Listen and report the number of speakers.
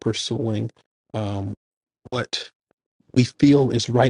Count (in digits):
1